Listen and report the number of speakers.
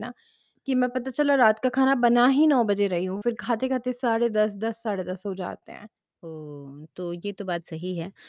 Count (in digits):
2